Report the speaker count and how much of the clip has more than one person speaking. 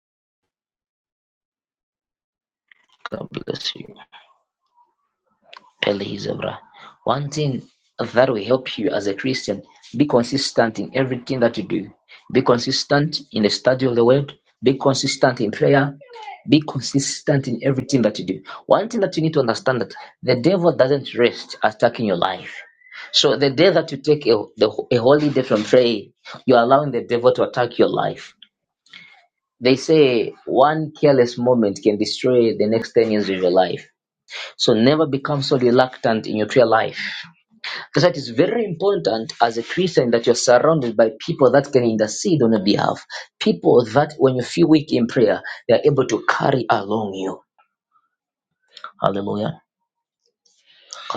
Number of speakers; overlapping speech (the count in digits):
1, no overlap